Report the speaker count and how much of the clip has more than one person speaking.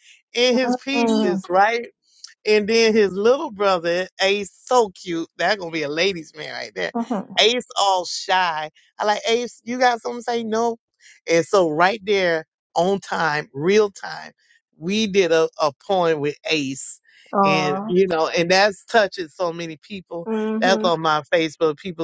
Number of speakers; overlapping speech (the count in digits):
2, about 8%